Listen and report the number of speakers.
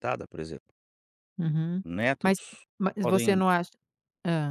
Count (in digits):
2